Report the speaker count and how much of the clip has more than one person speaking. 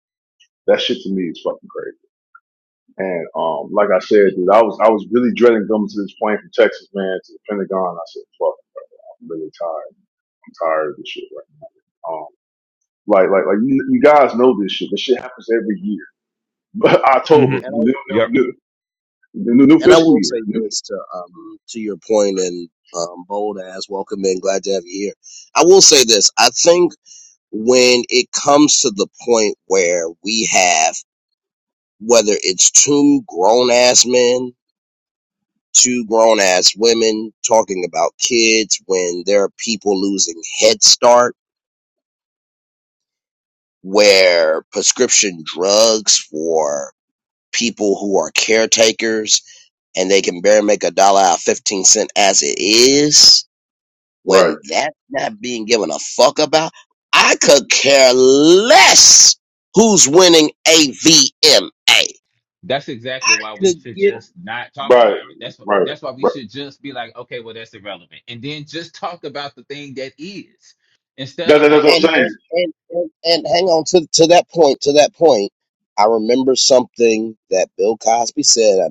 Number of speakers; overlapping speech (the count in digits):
3, about 6%